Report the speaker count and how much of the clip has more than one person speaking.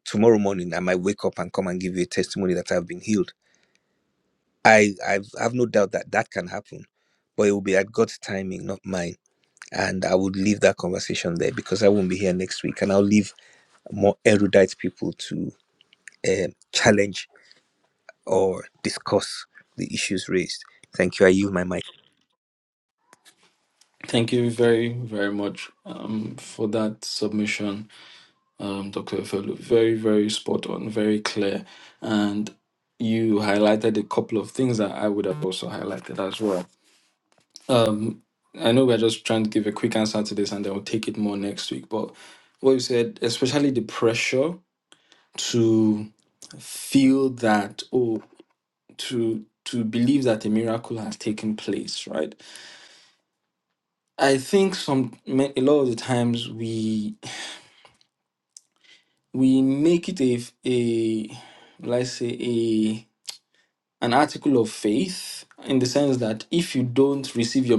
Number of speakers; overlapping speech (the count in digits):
2, no overlap